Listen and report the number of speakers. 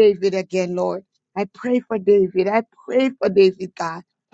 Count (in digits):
1